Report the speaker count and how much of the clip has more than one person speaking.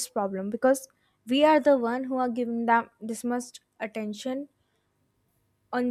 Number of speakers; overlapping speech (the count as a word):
one, no overlap